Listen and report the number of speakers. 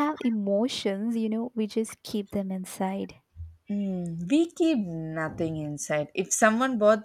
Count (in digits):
2